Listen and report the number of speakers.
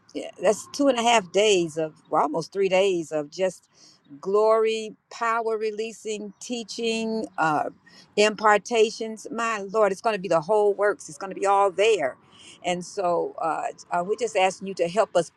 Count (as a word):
one